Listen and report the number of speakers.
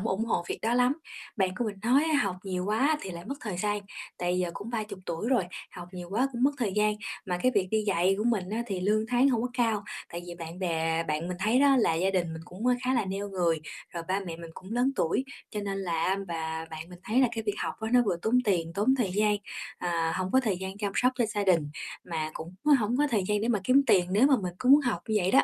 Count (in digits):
1